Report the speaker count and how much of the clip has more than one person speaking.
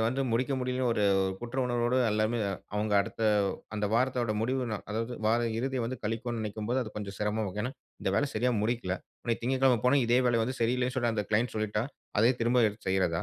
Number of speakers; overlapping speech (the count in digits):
1, no overlap